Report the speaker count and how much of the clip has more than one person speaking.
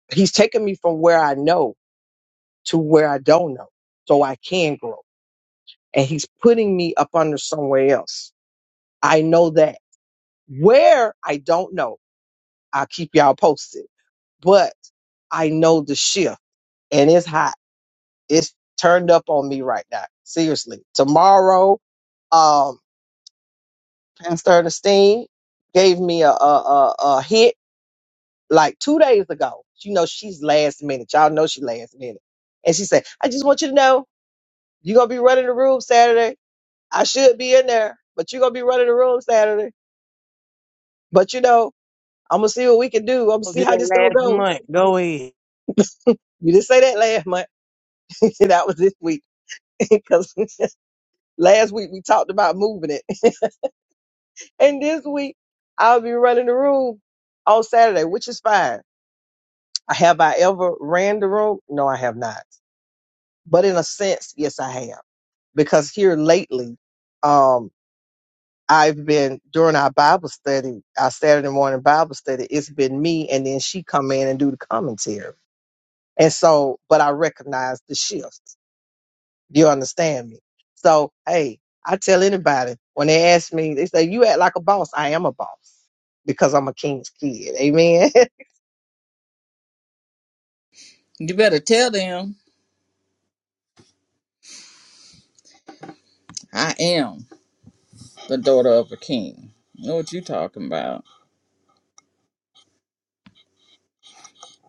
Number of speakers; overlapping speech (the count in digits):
3, about 1%